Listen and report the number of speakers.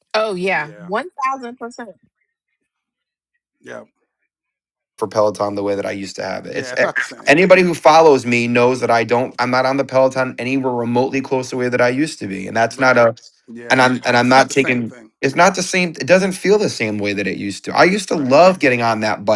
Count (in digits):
3